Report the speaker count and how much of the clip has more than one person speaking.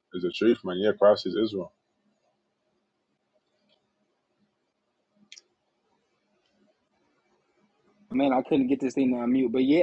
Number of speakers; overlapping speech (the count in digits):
2, no overlap